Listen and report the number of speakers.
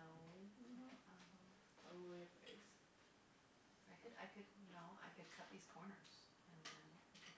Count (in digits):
2